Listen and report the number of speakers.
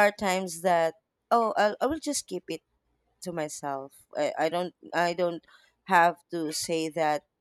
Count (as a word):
one